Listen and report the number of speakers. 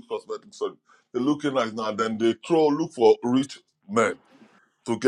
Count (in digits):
1